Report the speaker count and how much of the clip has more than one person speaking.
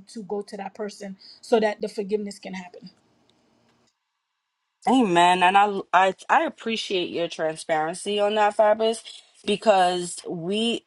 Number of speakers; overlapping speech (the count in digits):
2, no overlap